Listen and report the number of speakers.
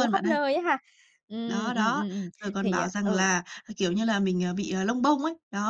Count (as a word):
two